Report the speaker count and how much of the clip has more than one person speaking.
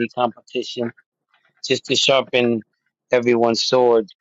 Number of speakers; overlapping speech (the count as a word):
one, no overlap